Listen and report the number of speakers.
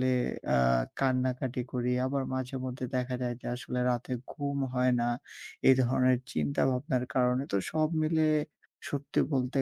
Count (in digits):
1